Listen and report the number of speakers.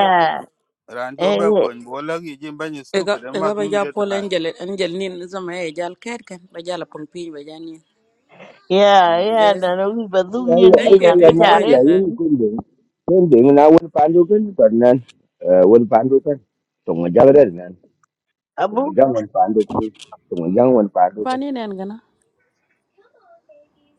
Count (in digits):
4